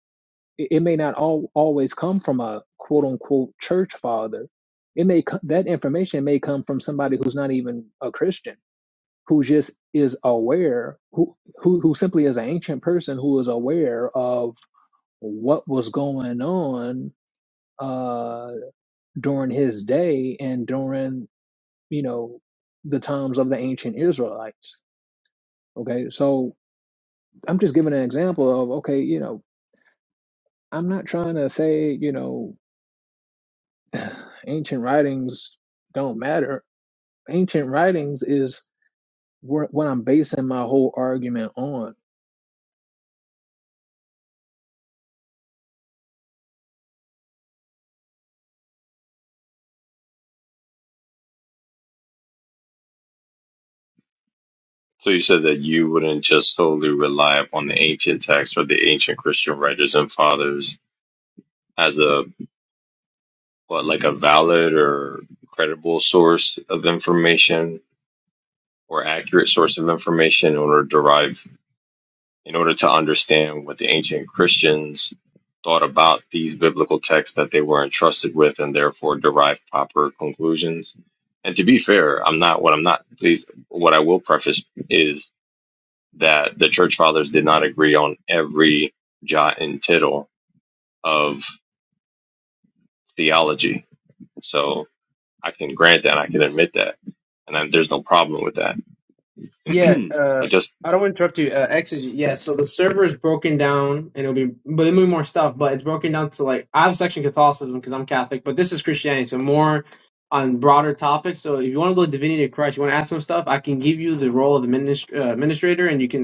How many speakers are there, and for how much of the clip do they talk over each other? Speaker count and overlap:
three, under 1%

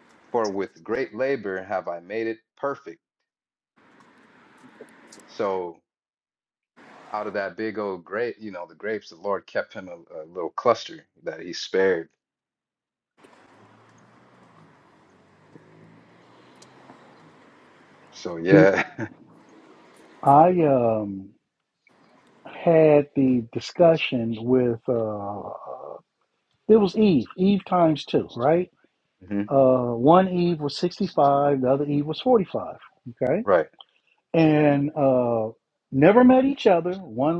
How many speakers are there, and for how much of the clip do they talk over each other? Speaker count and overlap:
two, about 1%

